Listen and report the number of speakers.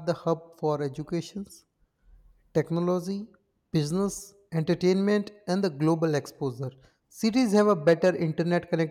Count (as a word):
one